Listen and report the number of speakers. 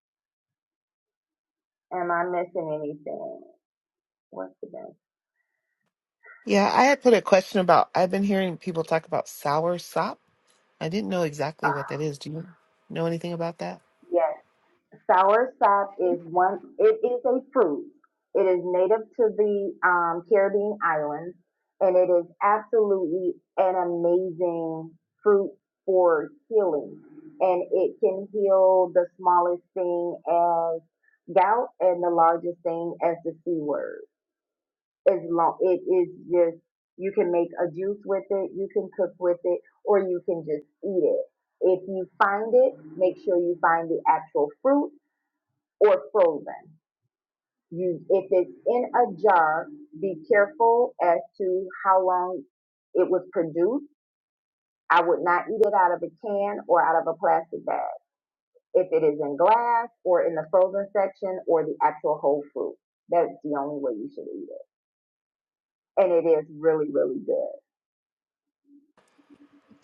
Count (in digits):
2